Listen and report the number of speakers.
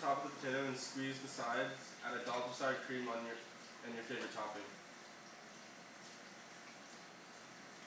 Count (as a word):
one